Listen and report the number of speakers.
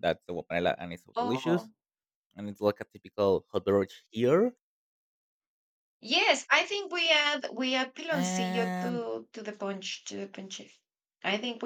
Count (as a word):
two